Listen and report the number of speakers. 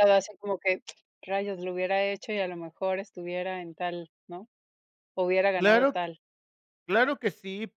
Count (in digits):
2